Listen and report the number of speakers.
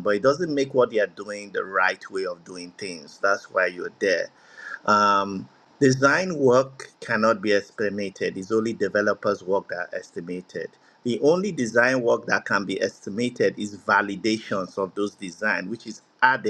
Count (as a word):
one